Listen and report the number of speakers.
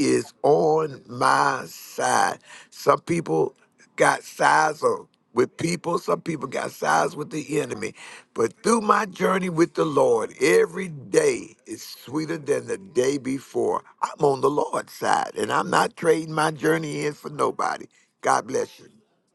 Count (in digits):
1